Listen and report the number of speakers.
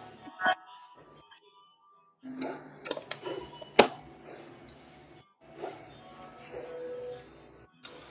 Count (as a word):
zero